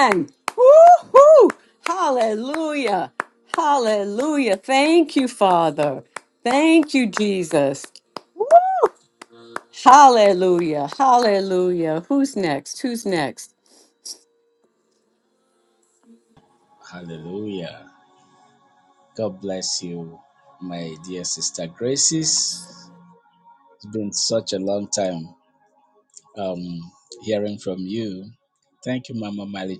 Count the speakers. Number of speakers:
two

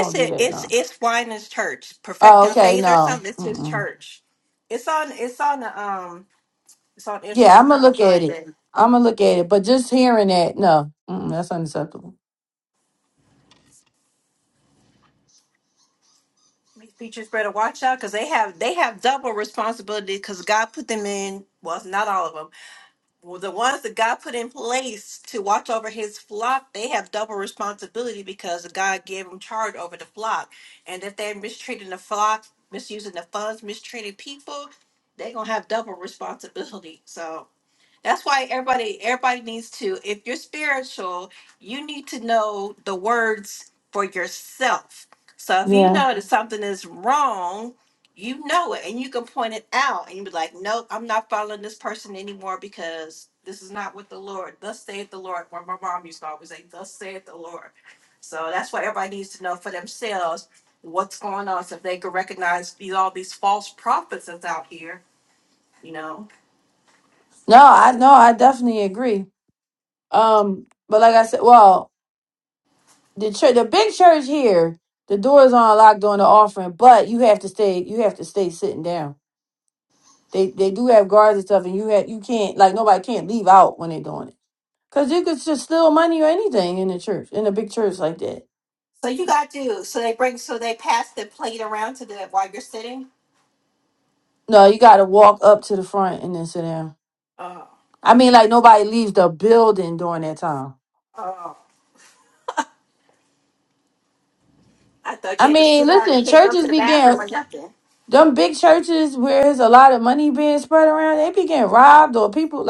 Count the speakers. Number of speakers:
two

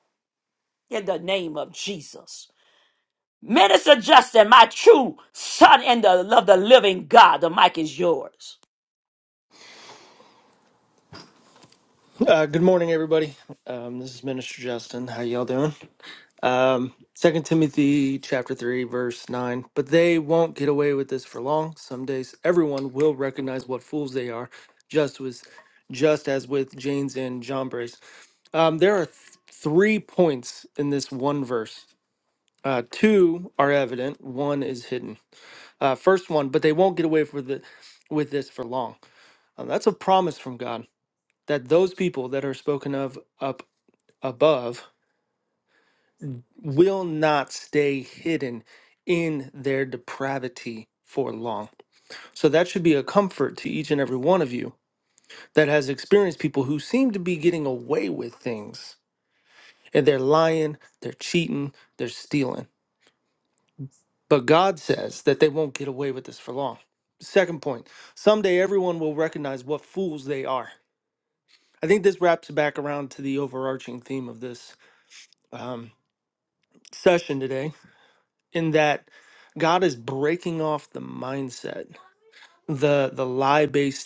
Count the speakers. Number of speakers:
two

